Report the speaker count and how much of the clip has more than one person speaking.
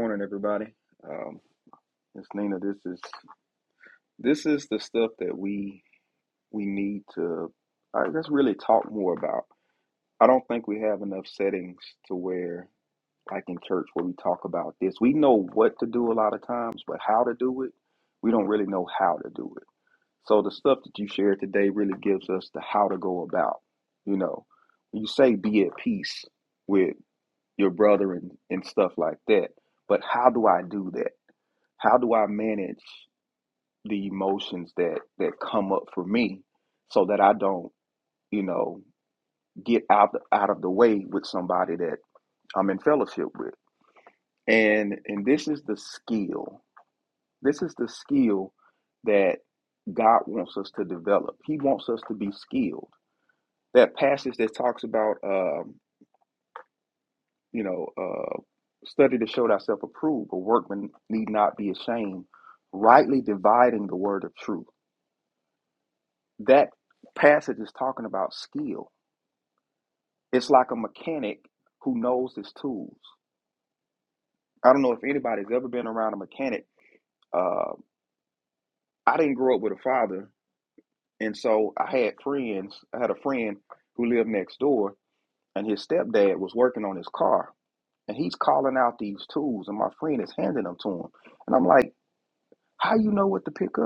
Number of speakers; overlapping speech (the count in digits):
1, no overlap